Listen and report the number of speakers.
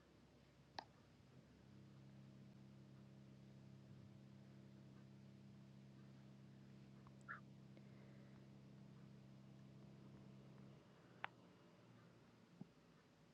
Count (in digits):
0